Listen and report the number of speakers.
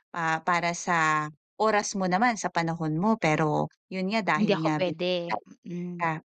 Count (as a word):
two